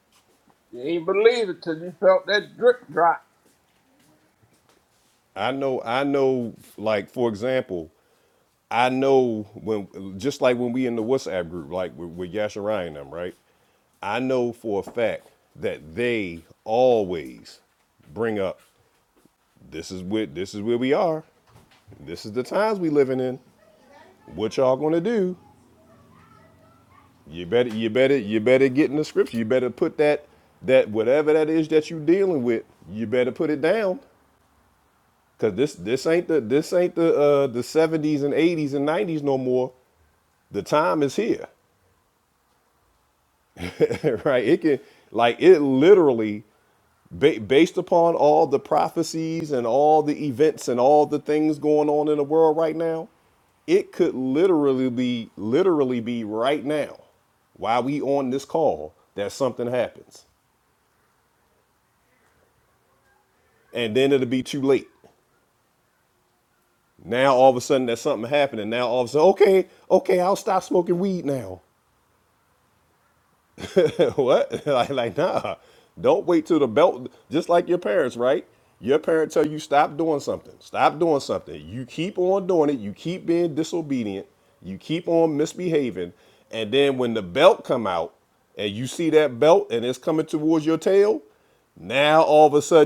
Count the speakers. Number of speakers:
2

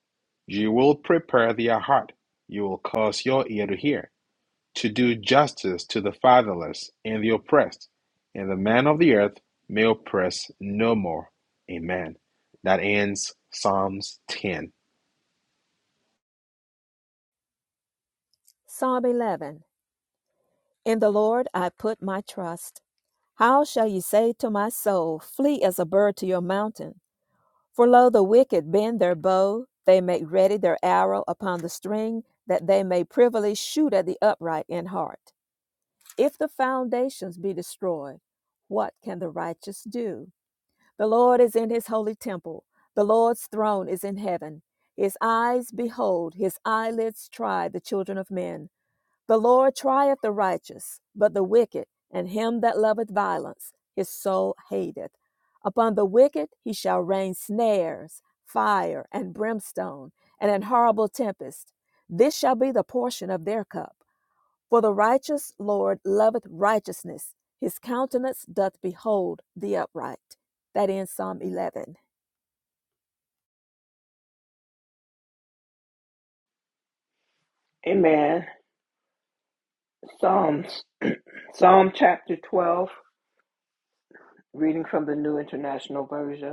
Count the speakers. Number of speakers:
3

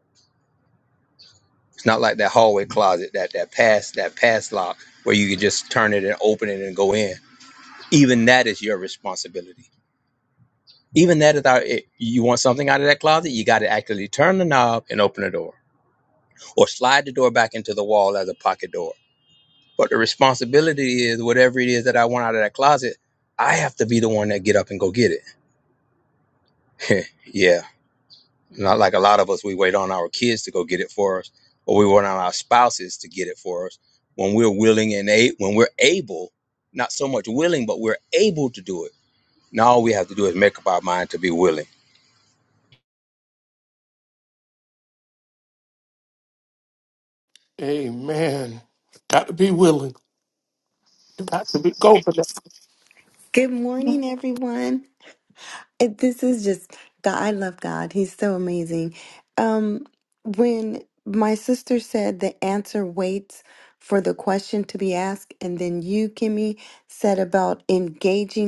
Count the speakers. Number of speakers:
3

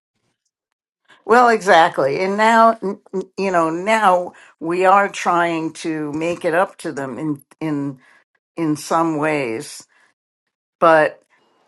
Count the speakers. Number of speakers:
1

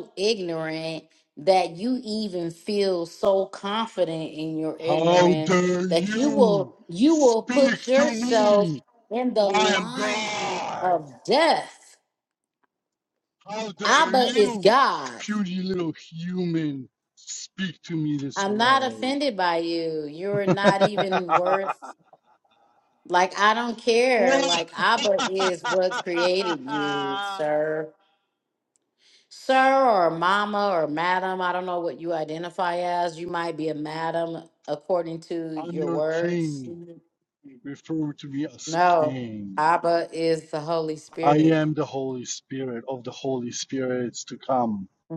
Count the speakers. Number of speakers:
2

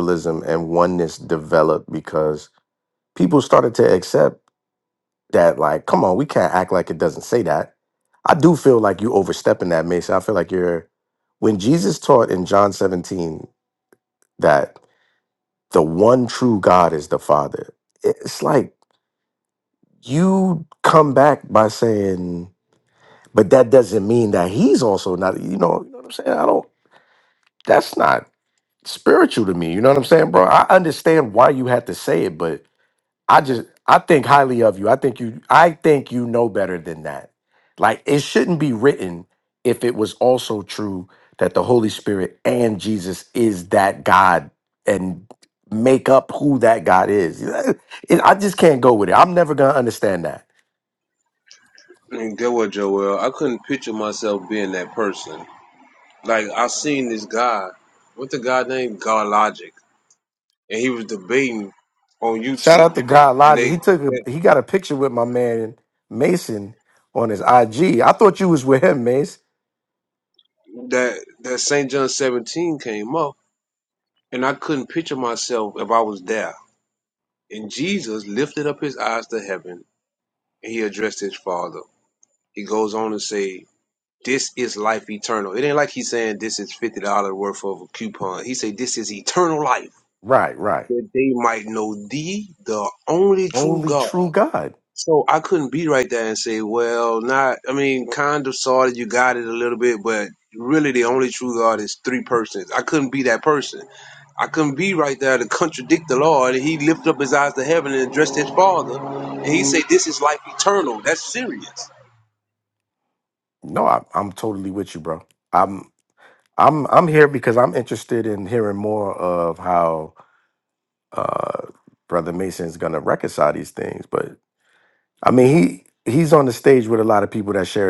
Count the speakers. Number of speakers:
2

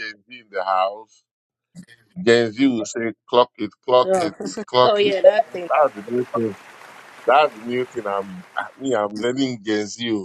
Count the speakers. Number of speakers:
2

